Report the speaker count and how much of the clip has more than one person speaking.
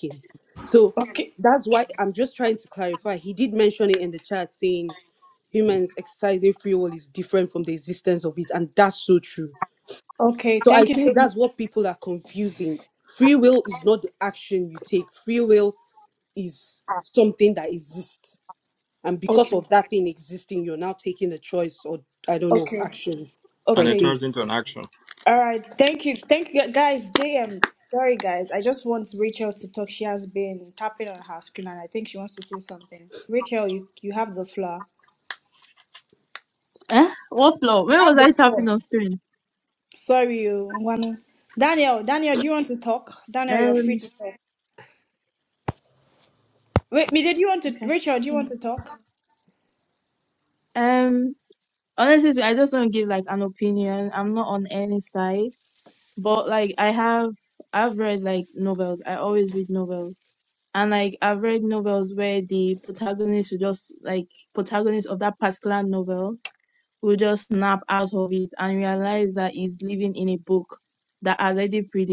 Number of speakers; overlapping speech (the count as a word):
four, about 5%